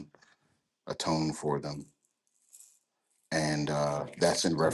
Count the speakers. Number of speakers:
one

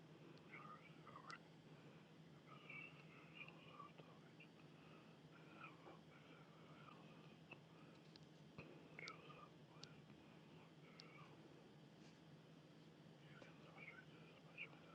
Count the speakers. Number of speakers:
zero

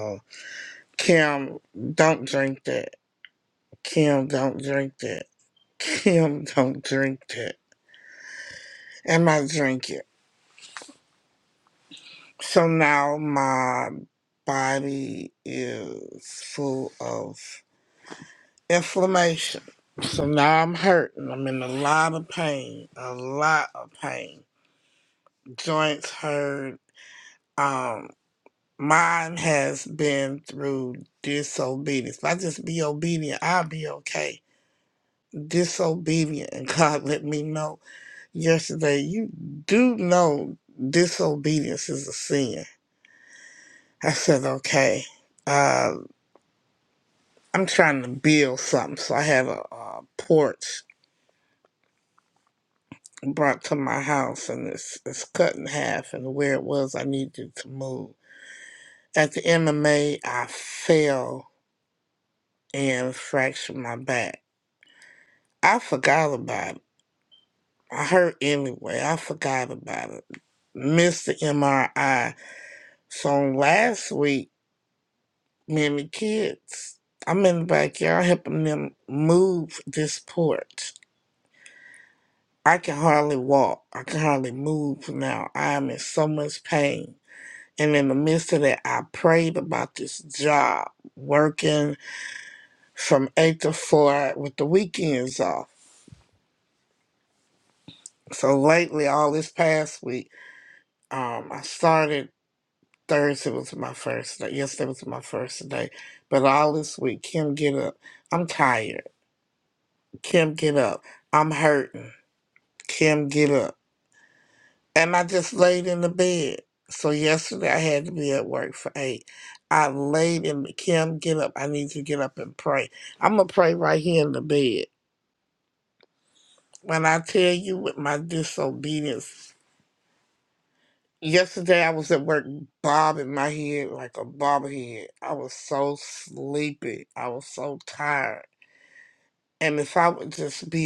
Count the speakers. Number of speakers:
one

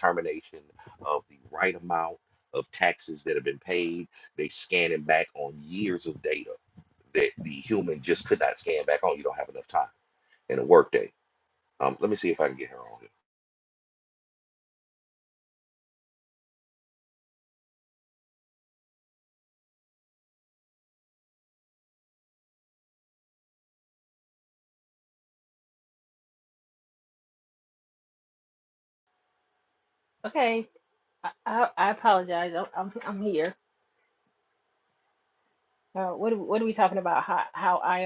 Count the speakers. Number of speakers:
two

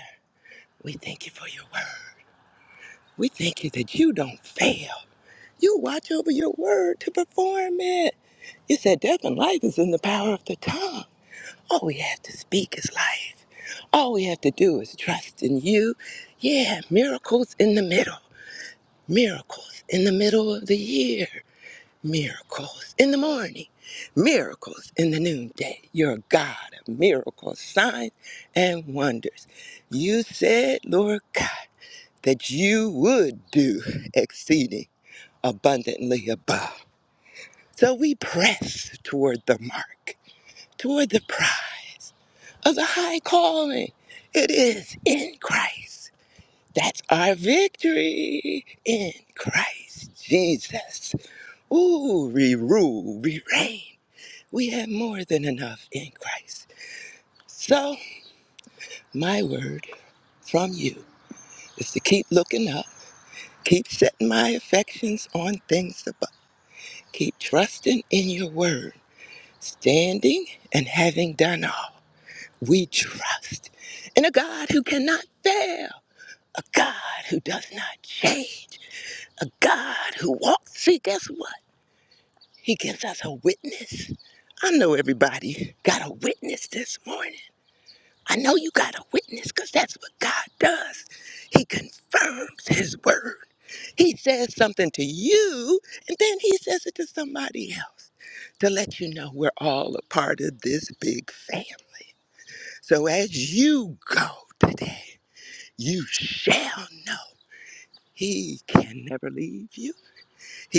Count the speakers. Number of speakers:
one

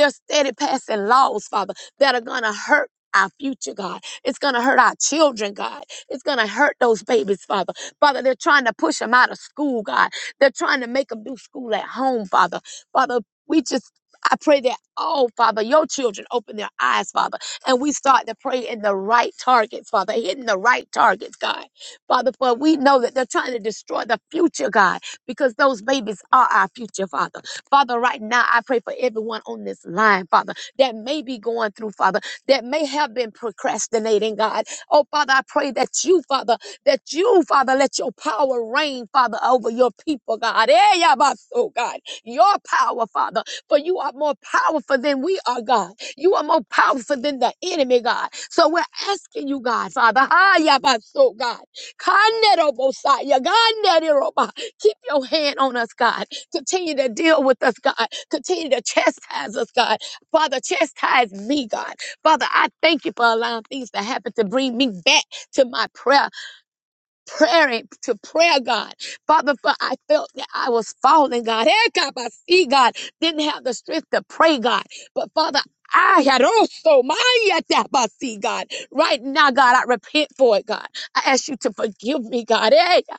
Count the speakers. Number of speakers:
one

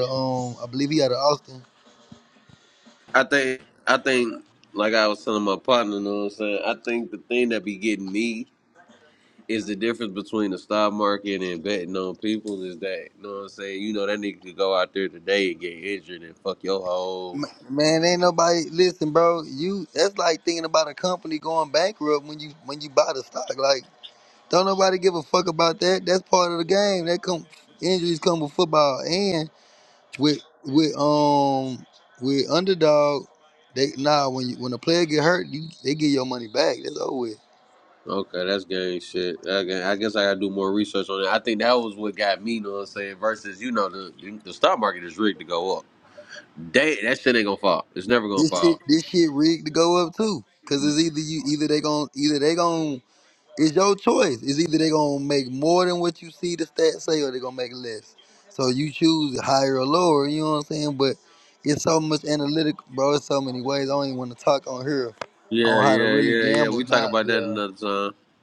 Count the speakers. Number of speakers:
two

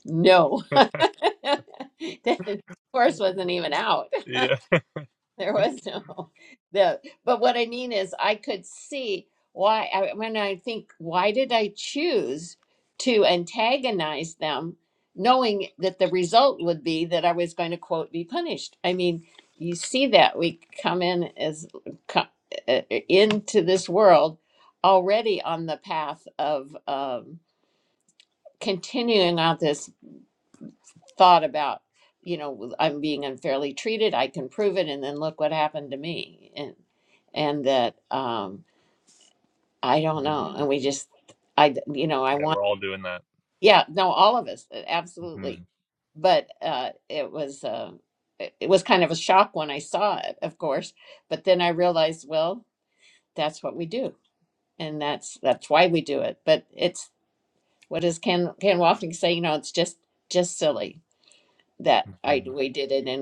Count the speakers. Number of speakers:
two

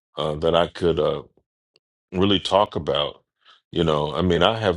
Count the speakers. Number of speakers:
one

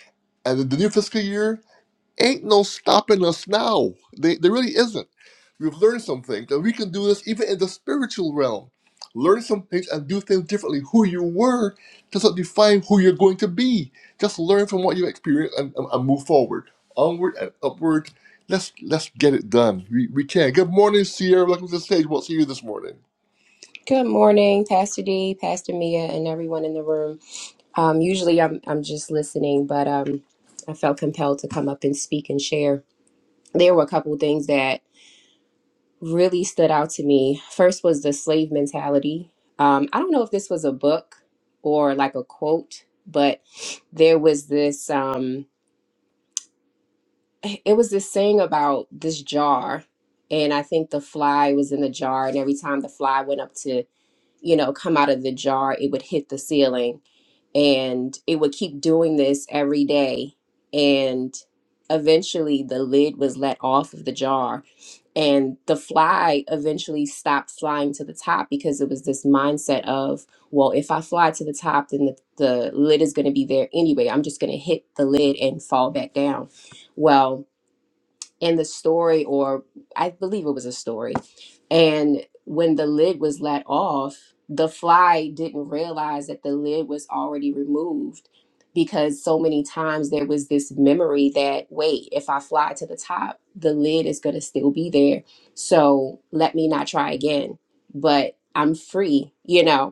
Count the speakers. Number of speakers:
two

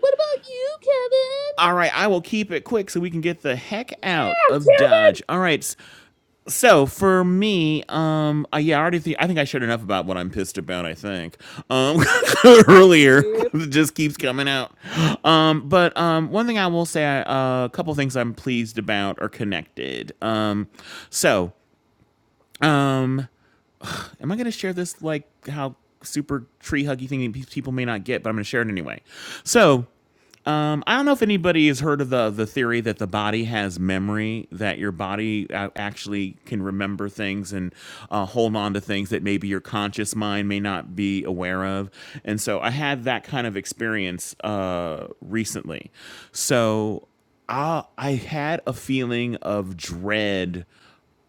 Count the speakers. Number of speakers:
two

